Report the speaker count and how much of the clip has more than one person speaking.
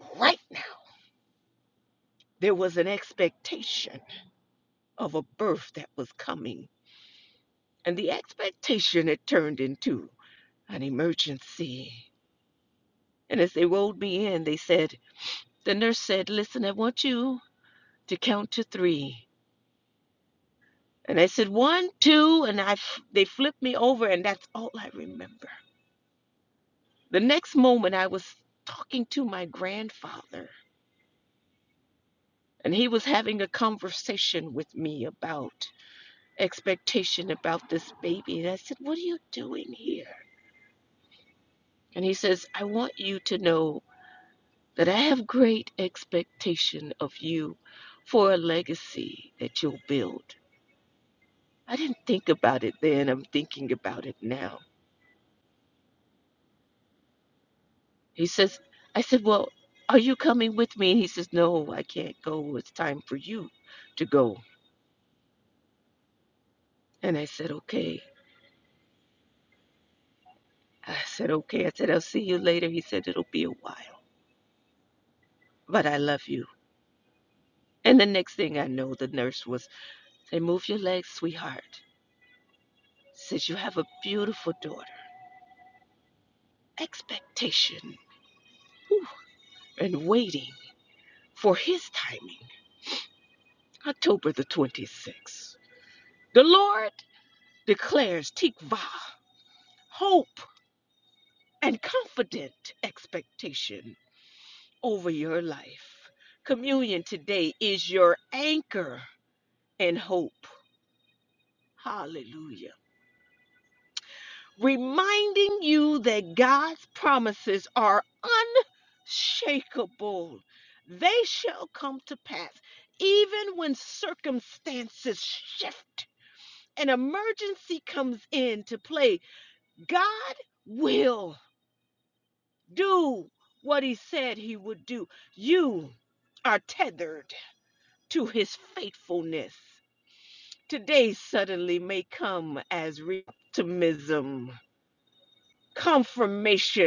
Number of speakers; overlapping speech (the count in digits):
1, no overlap